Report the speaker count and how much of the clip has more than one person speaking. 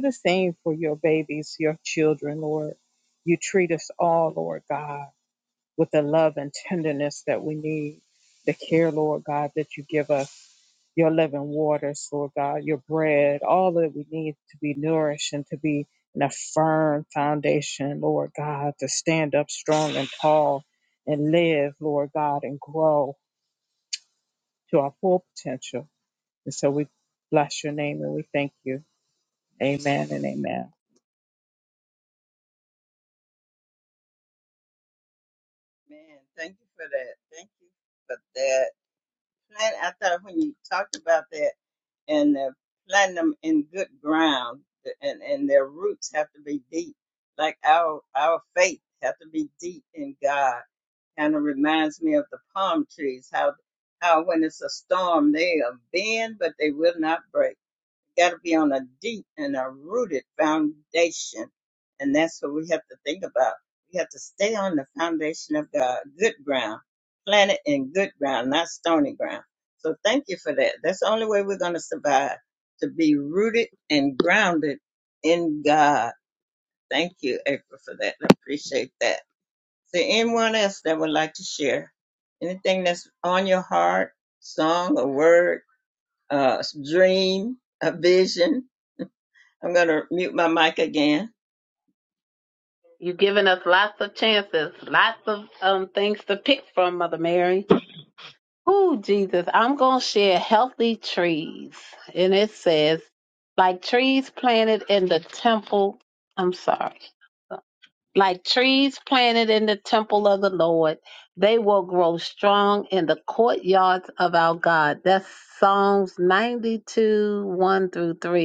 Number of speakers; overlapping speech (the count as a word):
three, no overlap